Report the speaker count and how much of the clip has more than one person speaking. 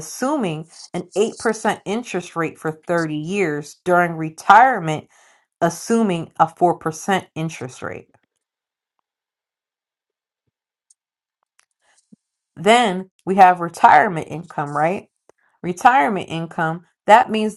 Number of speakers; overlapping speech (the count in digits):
1, no overlap